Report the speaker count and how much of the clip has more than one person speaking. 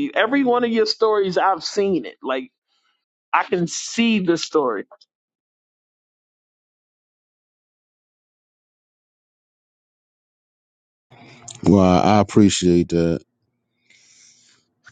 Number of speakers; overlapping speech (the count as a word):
two, no overlap